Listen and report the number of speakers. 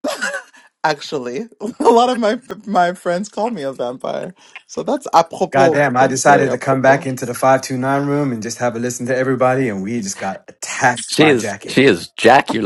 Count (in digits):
3